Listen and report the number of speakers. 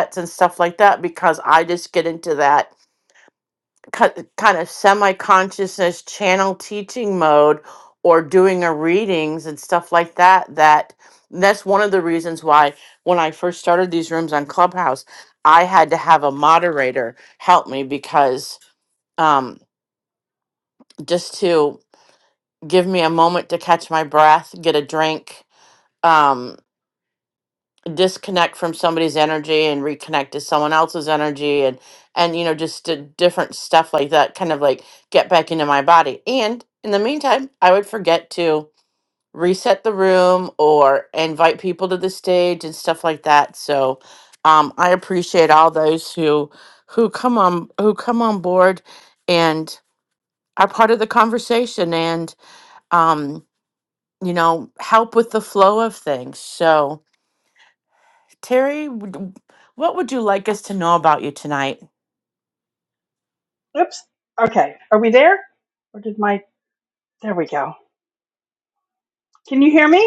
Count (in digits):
2